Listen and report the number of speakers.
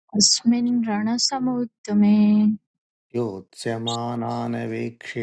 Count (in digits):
2